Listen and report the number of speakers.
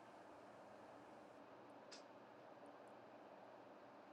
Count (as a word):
zero